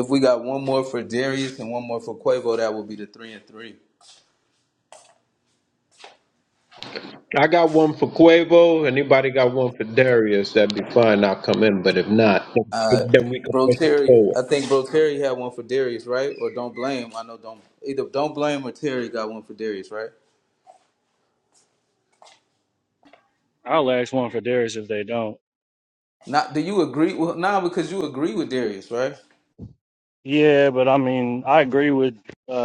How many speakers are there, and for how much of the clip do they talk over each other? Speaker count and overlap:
3, about 3%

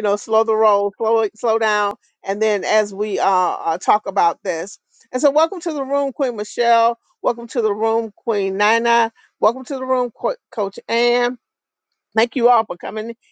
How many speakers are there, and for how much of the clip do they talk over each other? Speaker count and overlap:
1, no overlap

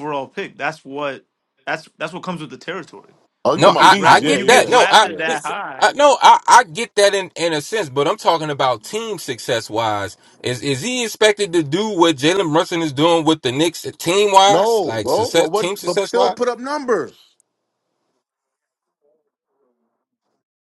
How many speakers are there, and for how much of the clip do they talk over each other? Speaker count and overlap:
3, about 20%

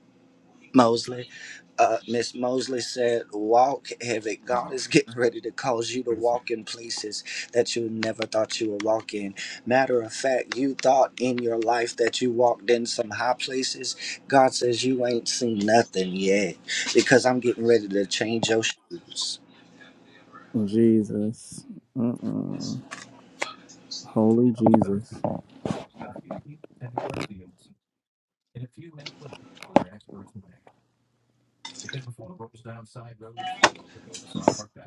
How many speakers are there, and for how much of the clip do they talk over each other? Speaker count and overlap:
3, about 3%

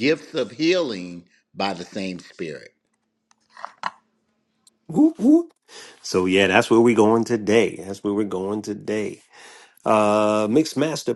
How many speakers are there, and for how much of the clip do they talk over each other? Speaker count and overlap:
2, no overlap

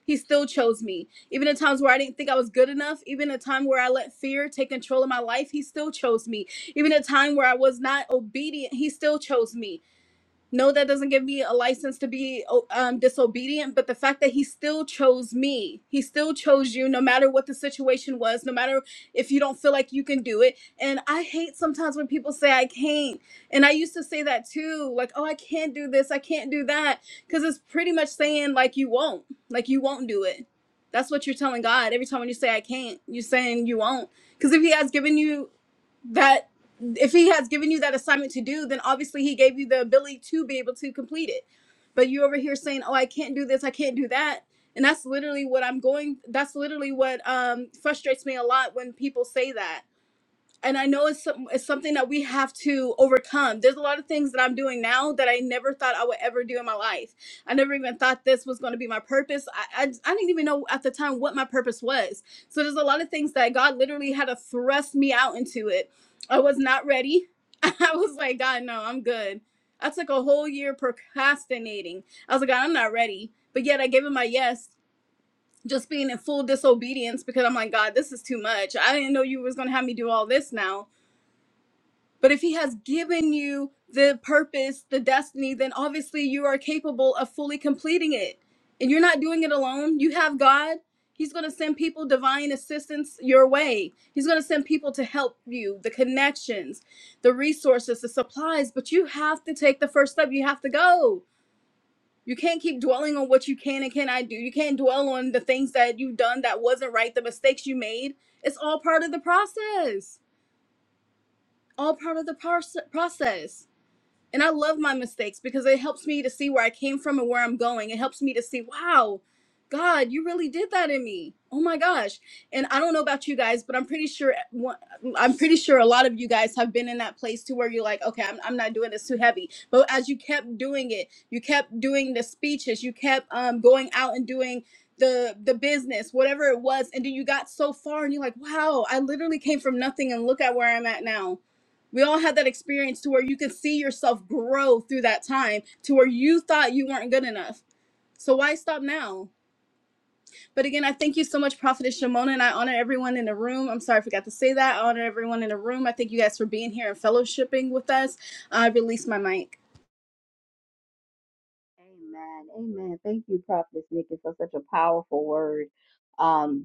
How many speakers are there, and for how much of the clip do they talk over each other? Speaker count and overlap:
2, no overlap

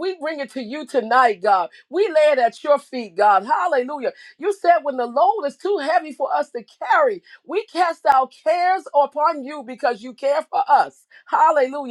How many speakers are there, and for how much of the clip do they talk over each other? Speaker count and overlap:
1, no overlap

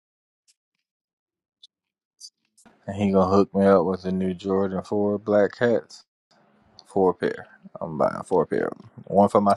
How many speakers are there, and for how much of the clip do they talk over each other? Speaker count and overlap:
1, no overlap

